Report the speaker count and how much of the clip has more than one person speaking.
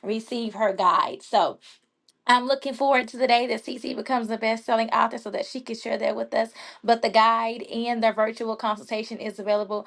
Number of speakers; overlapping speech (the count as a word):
one, no overlap